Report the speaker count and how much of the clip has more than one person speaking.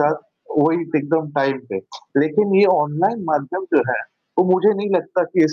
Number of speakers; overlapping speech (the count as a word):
one, no overlap